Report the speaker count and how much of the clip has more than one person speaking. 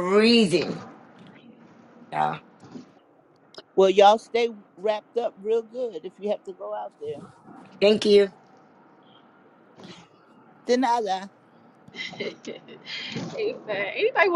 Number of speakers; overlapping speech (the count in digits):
3, no overlap